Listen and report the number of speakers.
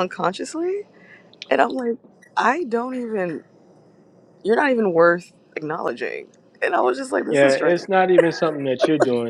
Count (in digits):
2